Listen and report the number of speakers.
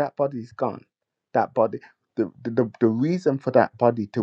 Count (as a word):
one